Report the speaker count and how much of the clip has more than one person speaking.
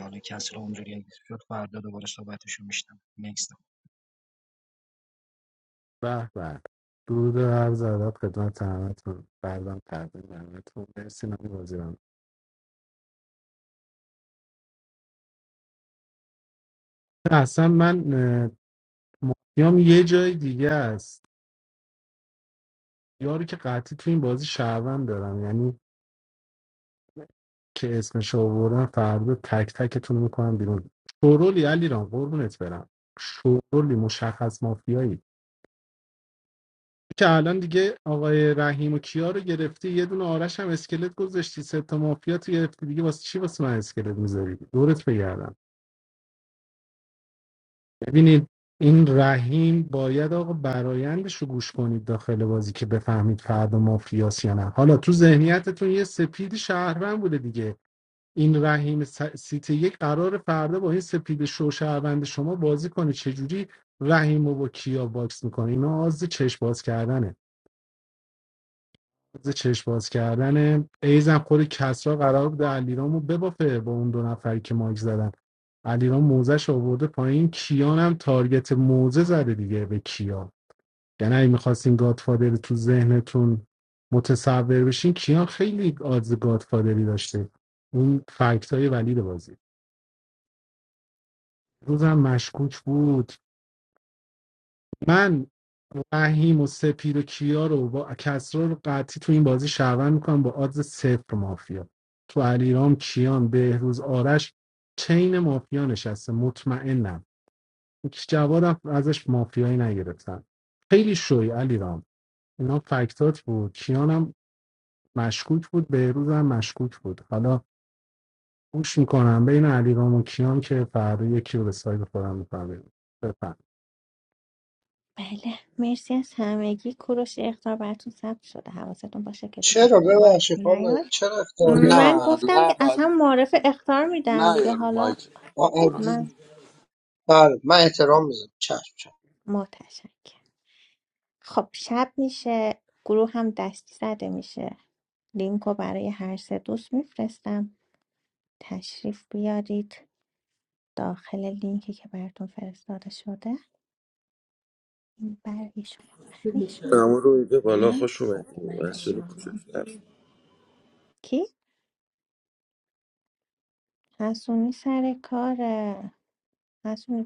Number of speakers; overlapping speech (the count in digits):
5, about 4%